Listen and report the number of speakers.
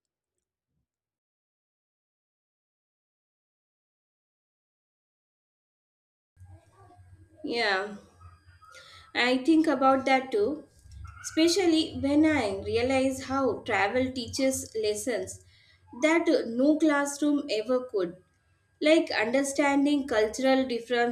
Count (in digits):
1